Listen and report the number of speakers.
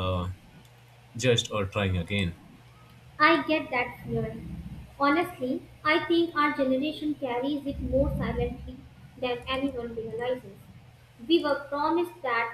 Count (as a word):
two